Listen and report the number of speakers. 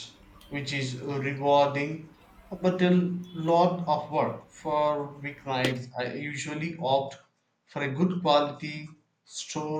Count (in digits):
1